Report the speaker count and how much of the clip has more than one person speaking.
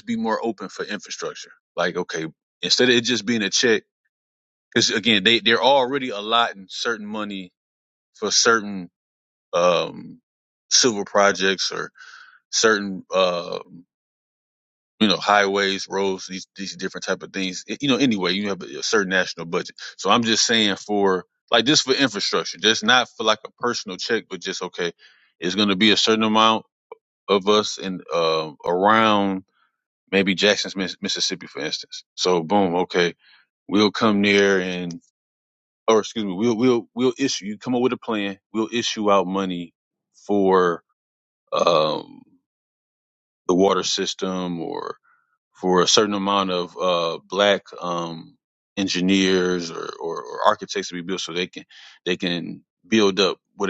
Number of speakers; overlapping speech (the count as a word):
one, no overlap